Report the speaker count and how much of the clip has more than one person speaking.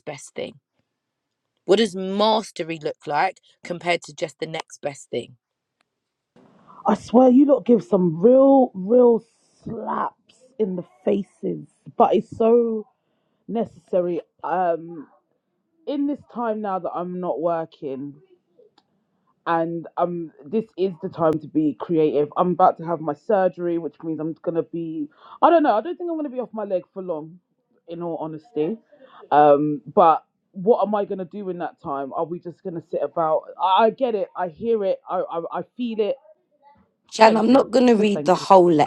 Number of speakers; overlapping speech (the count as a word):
three, about 2%